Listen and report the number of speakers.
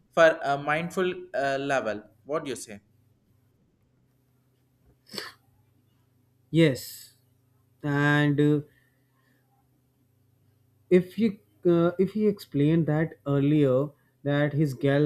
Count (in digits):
2